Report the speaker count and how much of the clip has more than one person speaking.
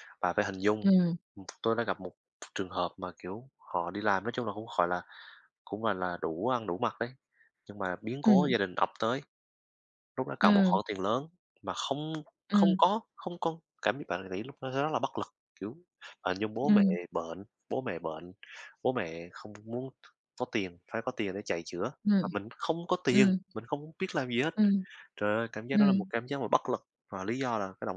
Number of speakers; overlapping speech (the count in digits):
2, about 8%